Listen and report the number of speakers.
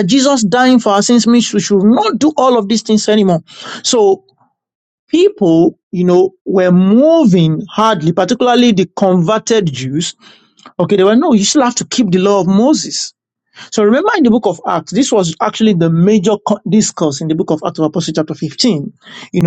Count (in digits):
1